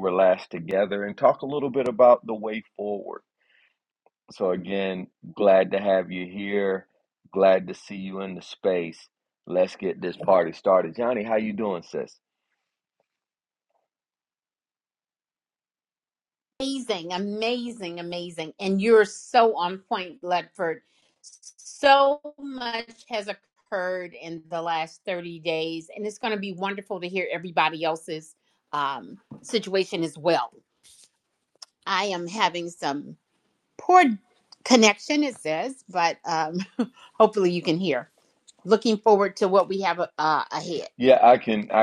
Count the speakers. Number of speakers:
2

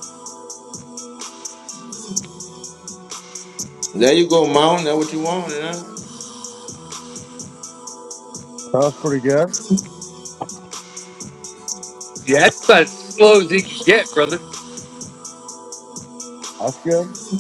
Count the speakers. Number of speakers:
3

